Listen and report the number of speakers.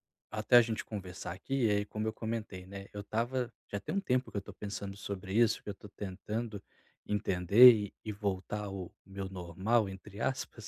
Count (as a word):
one